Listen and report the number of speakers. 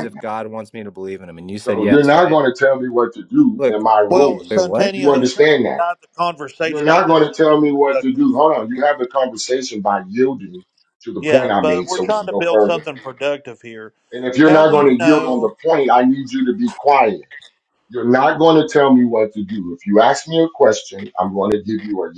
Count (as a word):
three